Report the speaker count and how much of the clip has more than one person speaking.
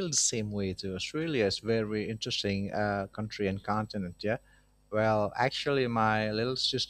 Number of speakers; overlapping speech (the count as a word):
one, no overlap